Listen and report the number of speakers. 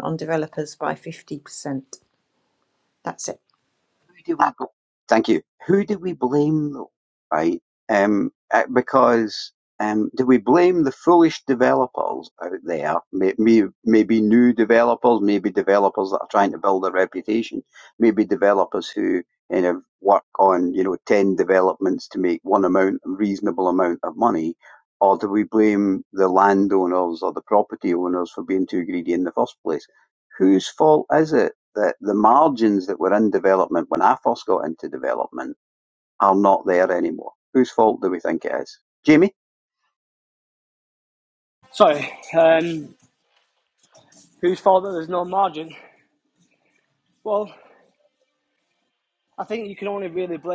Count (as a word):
three